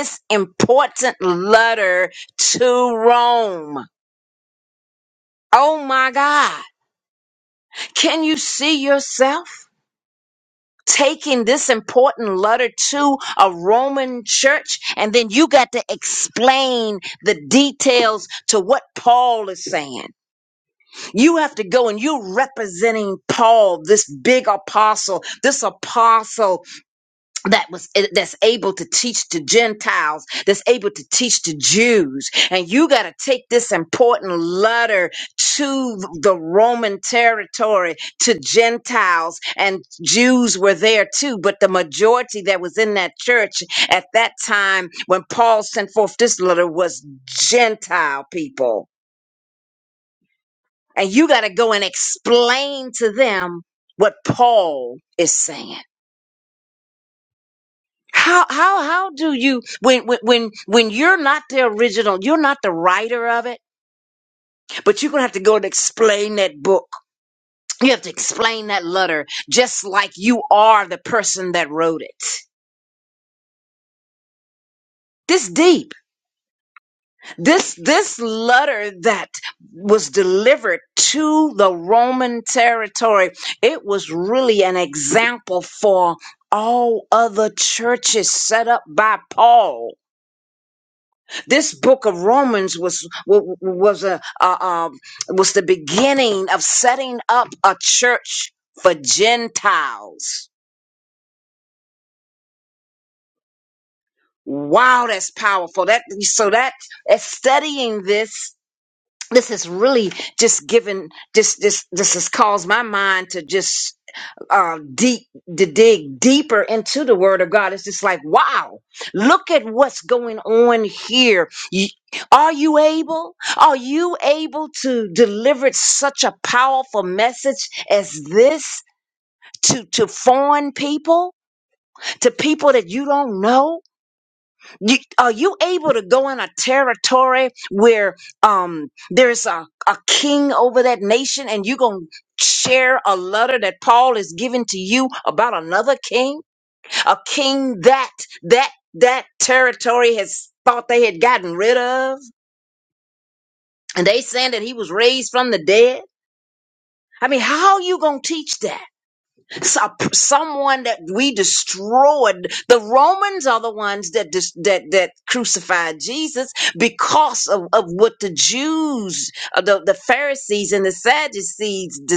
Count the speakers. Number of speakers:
1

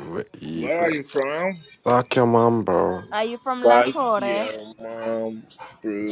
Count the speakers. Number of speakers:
3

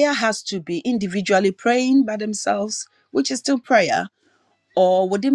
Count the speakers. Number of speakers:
1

